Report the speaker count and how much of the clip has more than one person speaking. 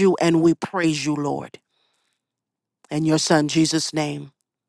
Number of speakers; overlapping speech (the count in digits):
1, no overlap